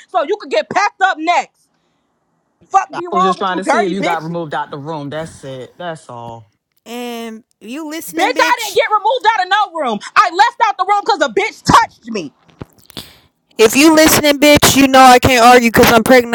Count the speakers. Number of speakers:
3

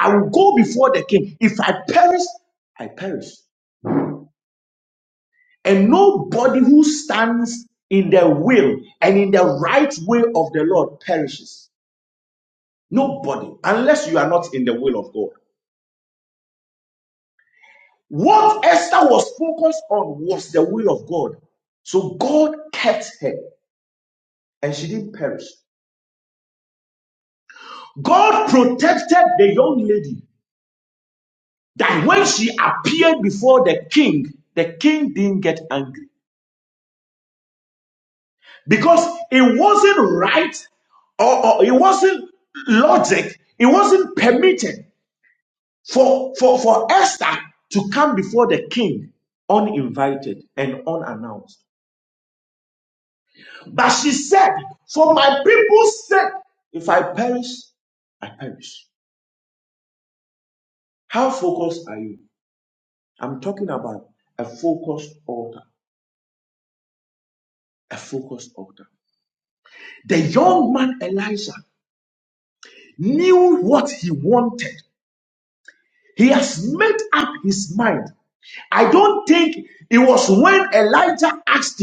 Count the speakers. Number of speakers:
1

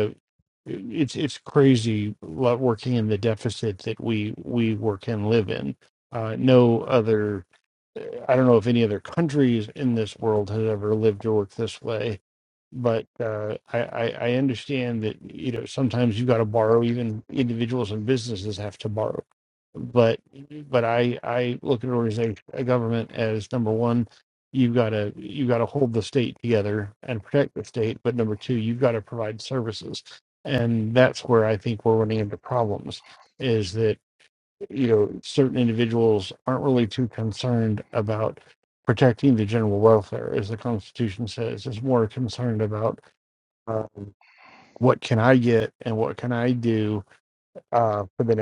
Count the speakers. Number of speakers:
1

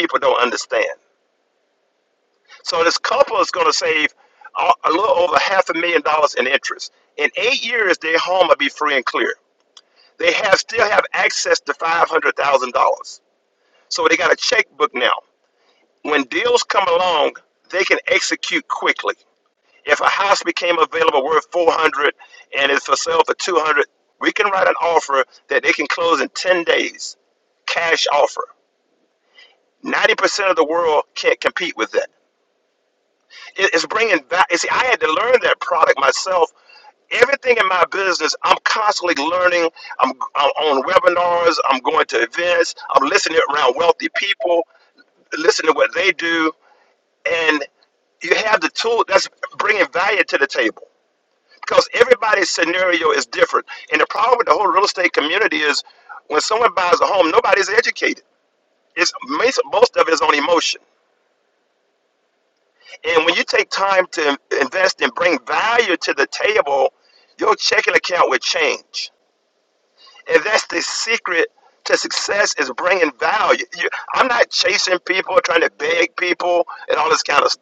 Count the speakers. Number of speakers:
1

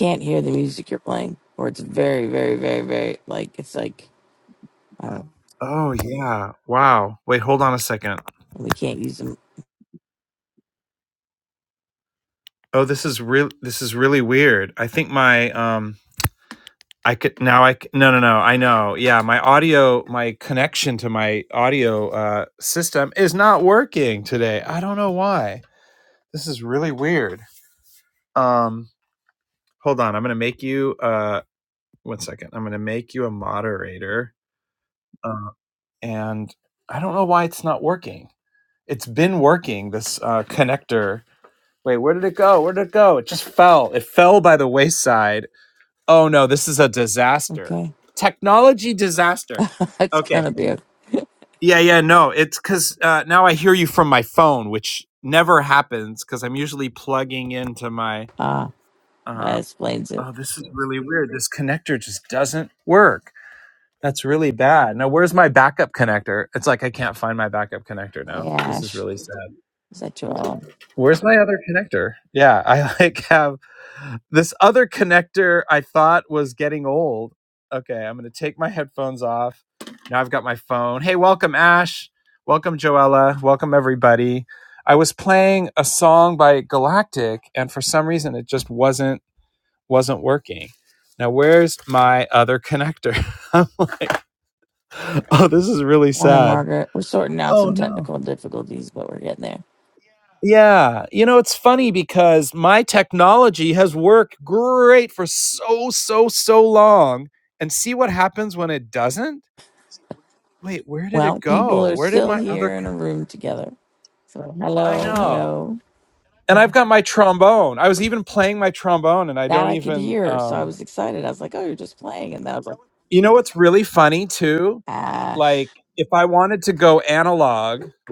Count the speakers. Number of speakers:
2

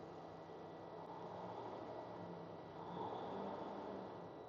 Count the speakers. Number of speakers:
0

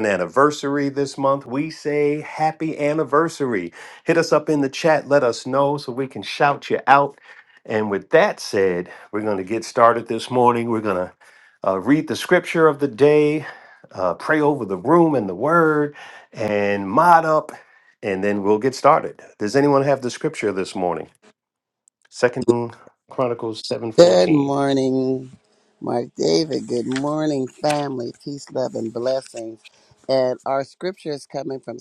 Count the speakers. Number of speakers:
2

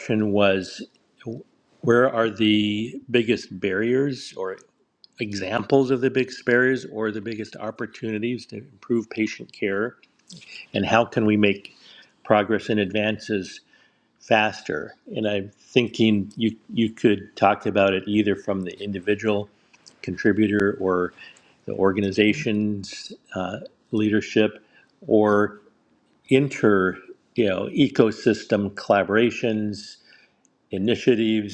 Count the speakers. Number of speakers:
1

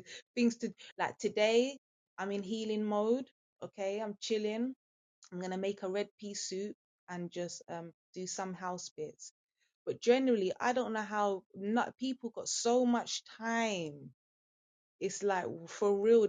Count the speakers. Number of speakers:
1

